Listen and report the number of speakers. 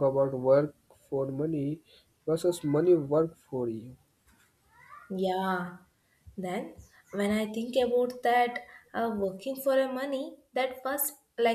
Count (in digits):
2